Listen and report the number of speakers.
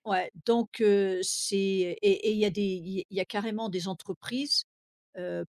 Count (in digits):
1